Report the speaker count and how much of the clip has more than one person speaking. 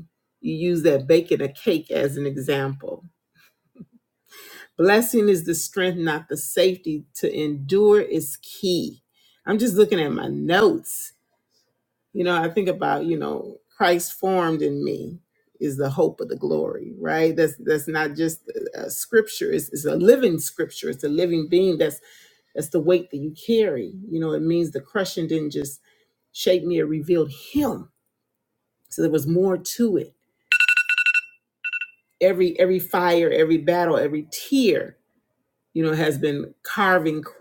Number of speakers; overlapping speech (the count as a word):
one, no overlap